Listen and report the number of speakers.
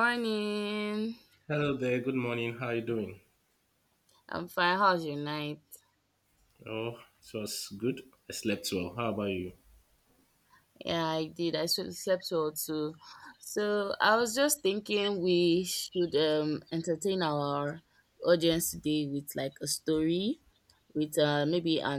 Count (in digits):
2